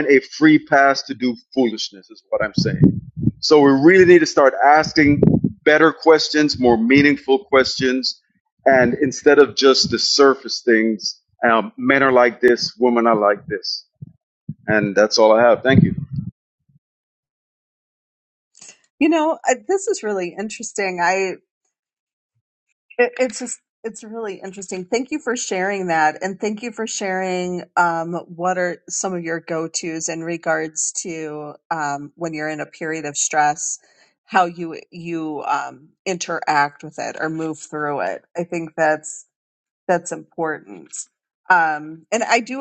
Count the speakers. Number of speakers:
2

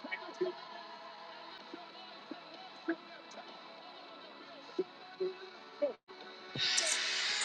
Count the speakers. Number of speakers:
0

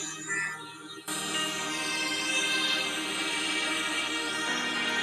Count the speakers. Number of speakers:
0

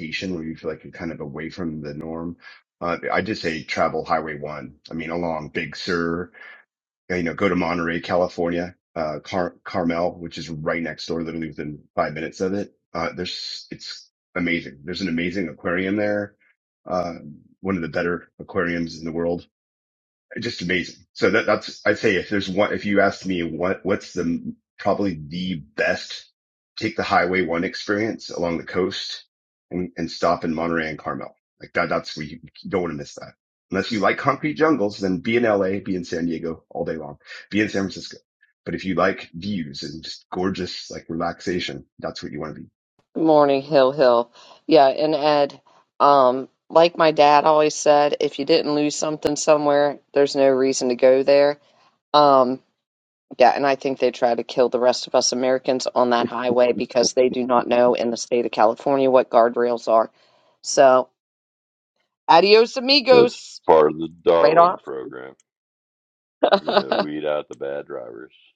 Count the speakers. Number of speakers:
3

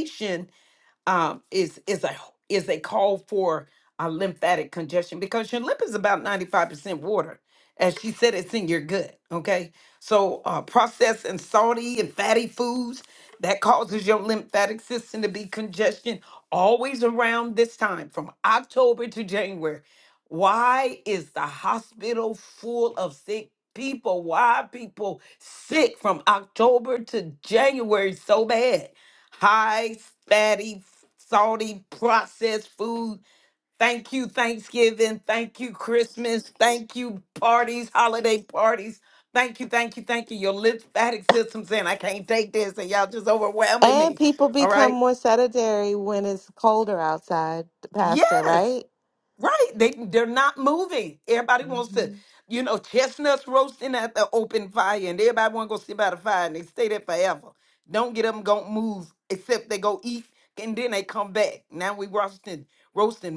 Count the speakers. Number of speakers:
2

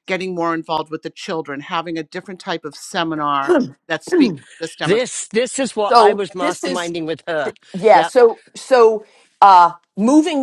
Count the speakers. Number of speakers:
3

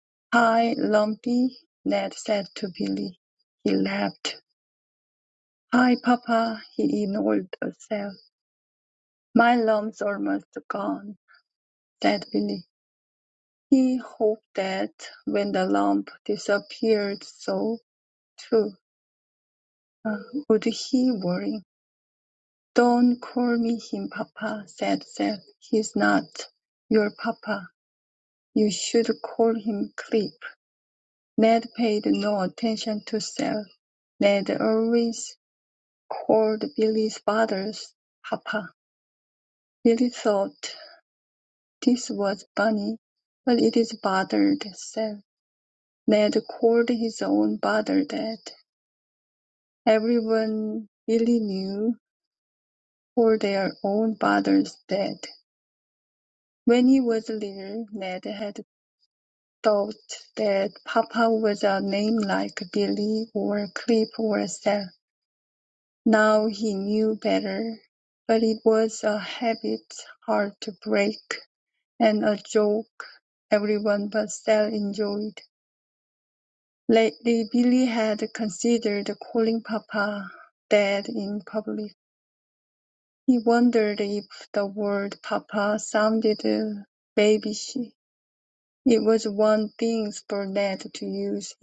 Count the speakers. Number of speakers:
1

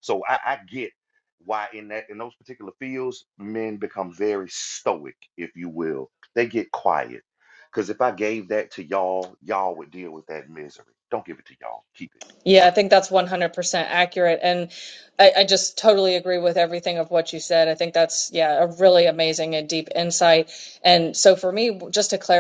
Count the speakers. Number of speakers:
2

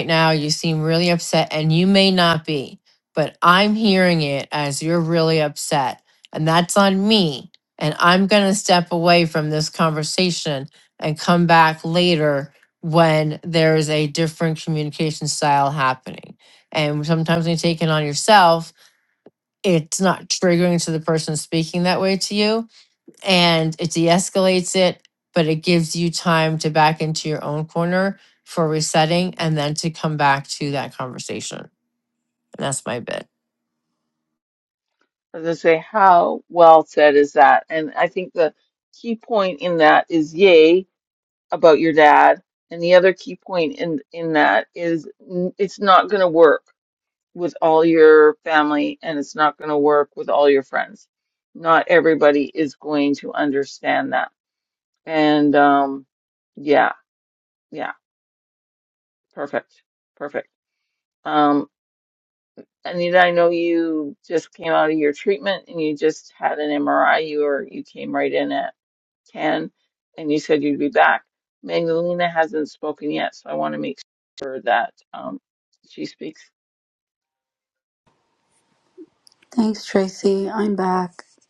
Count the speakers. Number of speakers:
3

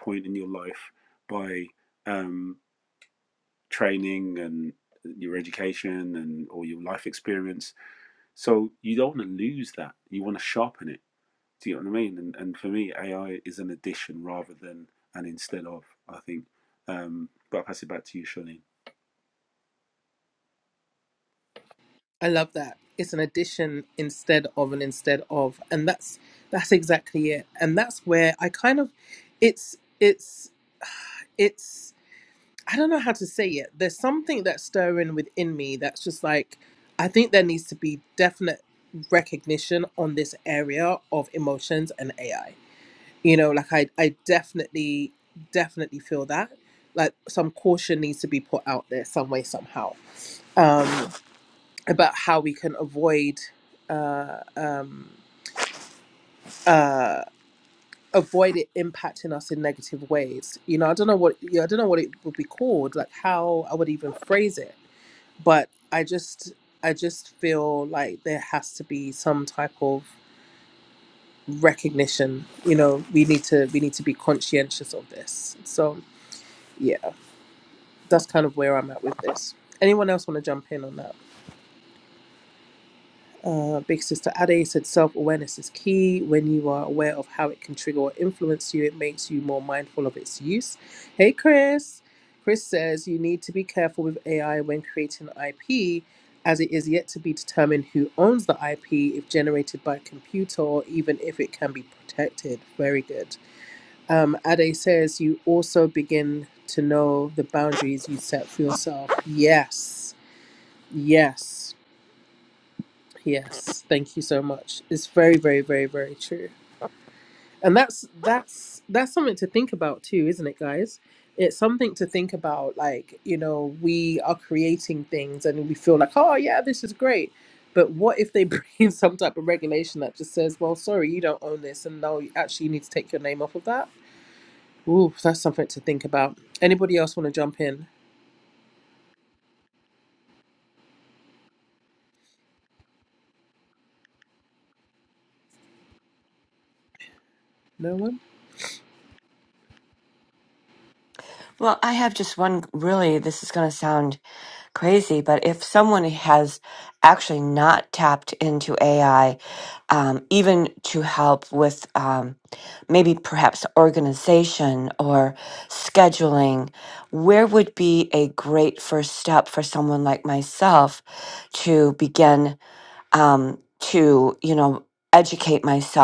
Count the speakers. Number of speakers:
3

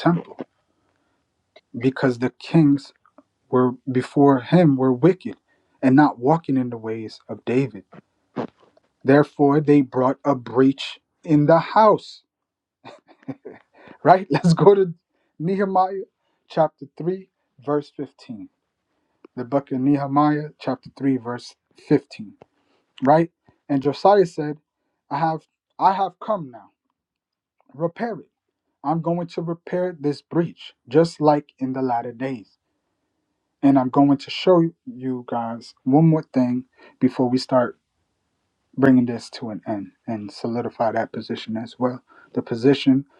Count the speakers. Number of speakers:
1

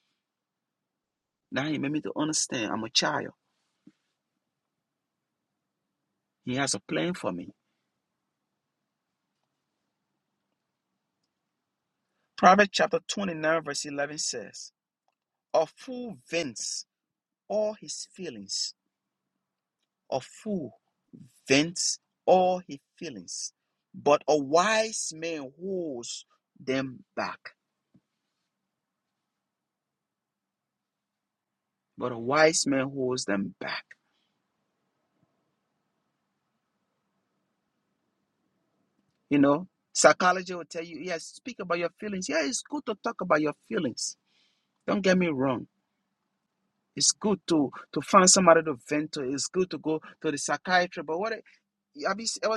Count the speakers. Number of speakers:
1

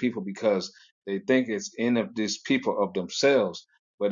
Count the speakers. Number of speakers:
1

